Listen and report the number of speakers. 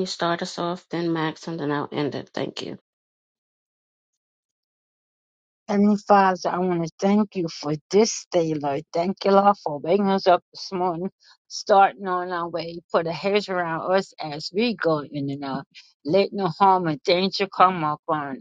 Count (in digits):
2